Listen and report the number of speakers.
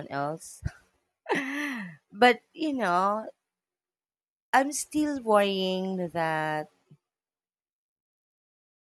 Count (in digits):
1